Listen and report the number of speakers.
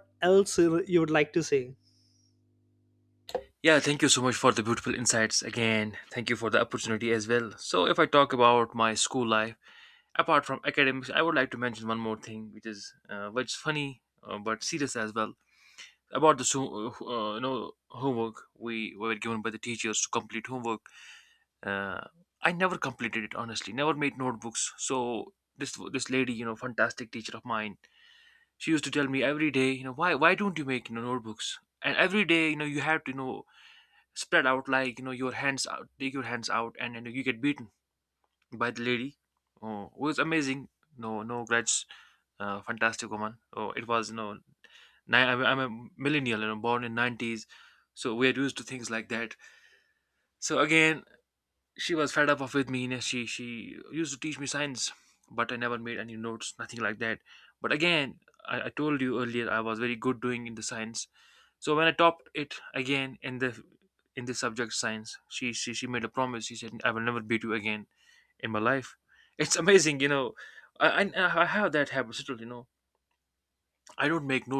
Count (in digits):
2